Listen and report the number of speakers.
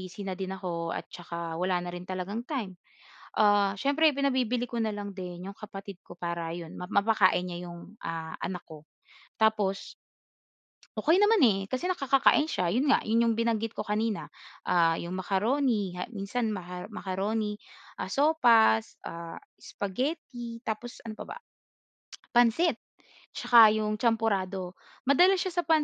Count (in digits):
1